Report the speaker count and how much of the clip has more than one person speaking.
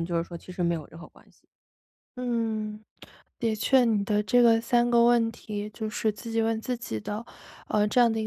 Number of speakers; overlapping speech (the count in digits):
2, no overlap